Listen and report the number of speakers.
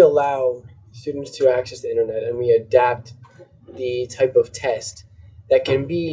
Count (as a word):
one